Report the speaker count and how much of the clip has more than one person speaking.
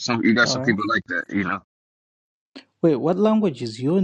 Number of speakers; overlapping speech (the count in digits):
2, about 9%